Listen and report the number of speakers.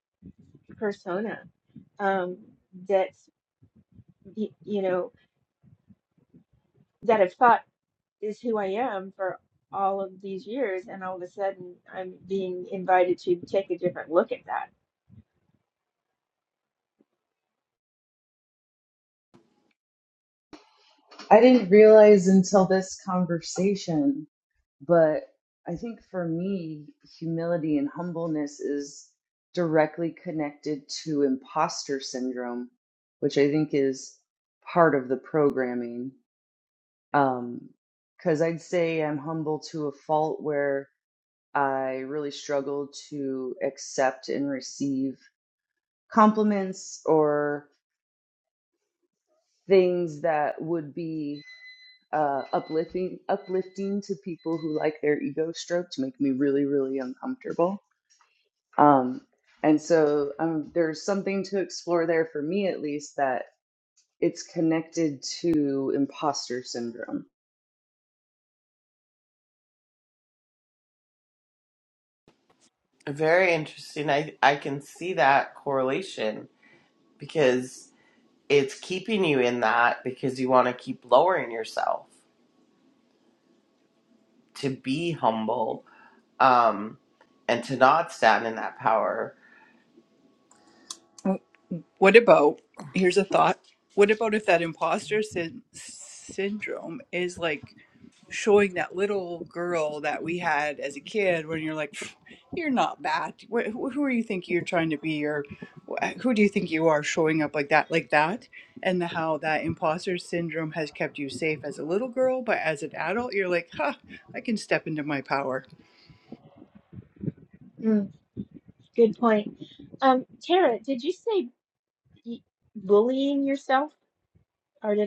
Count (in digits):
4